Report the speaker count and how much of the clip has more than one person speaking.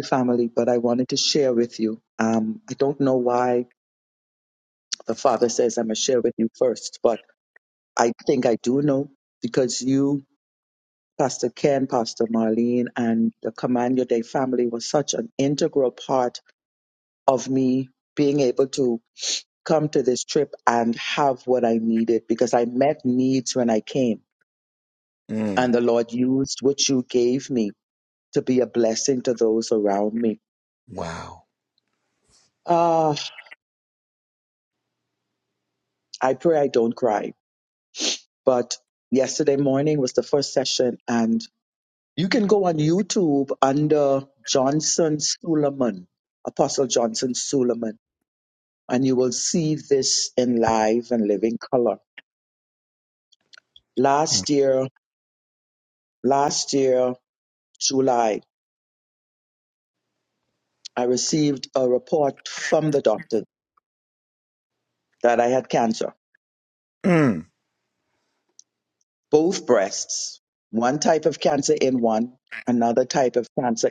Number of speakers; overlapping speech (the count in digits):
2, under 1%